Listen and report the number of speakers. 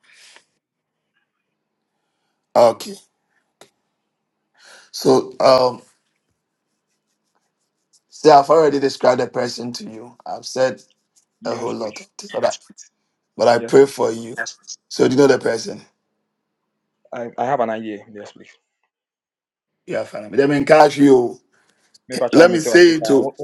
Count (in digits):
2